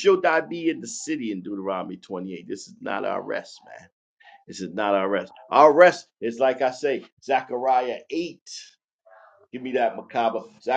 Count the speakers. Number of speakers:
1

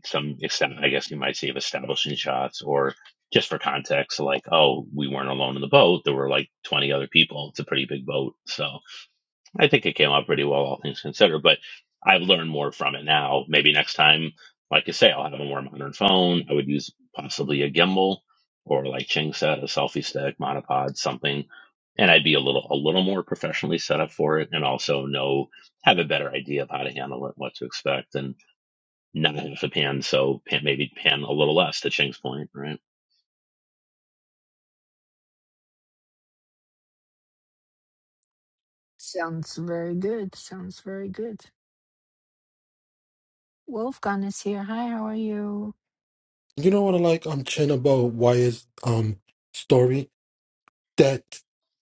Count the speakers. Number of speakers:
3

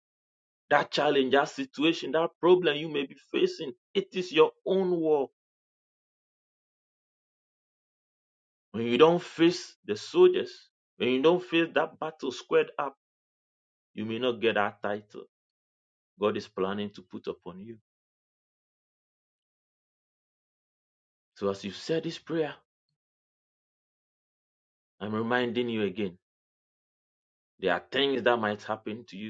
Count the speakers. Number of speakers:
1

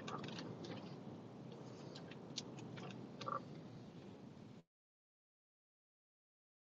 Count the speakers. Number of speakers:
0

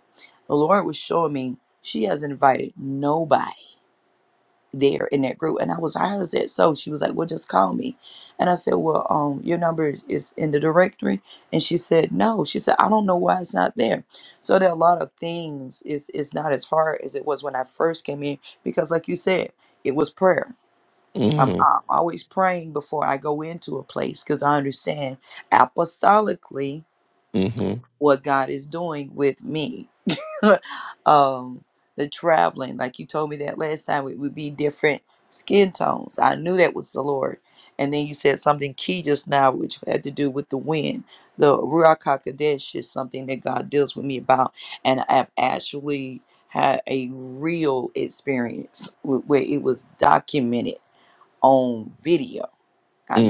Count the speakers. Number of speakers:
2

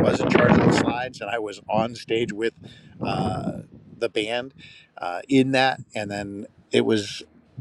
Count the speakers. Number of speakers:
1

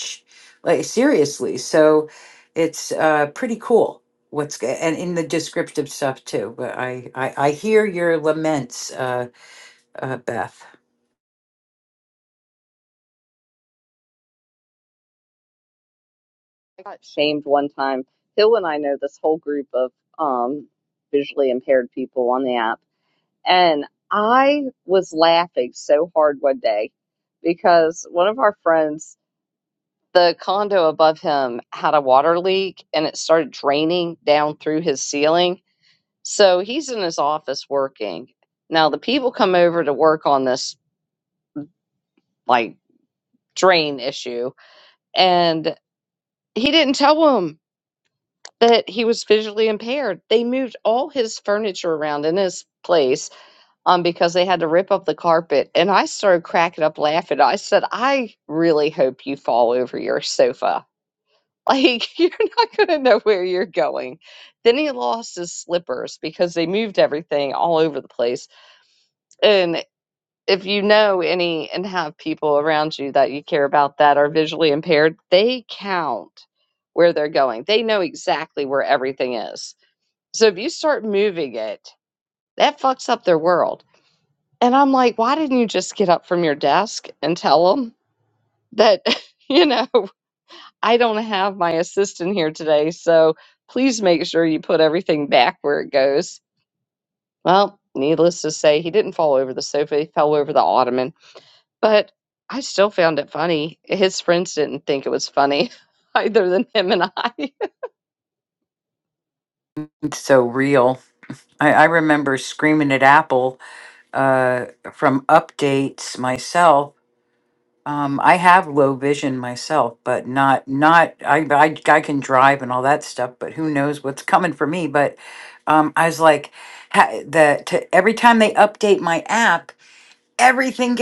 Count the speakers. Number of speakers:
2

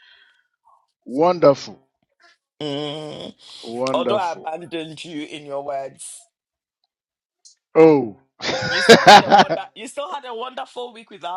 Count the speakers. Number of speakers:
2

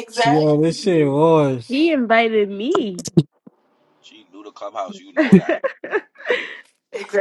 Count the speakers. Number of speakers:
4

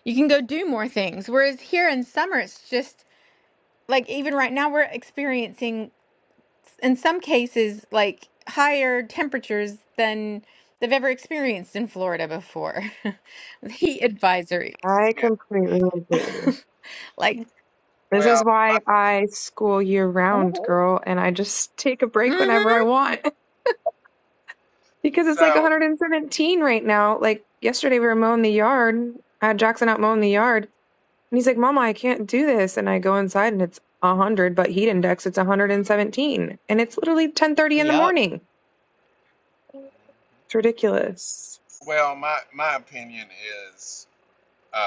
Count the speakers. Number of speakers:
3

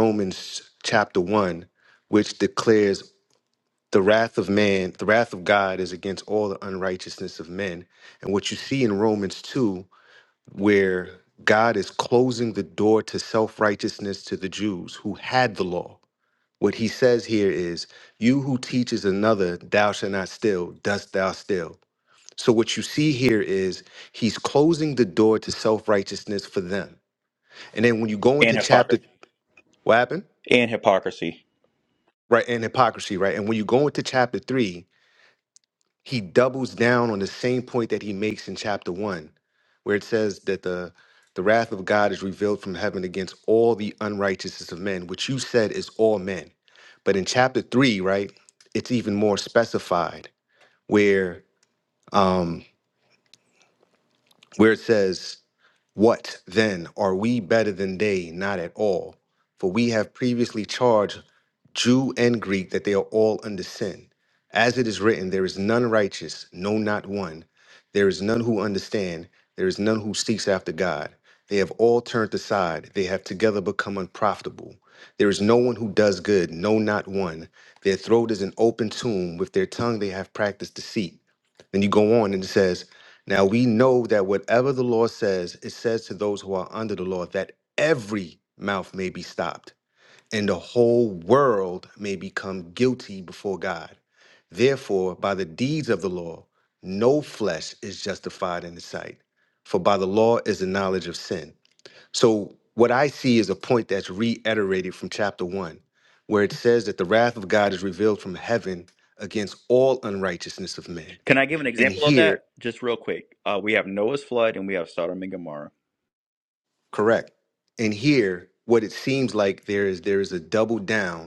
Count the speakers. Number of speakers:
2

